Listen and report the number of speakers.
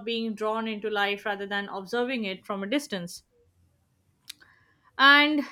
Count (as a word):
one